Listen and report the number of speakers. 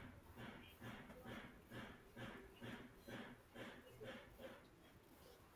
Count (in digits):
0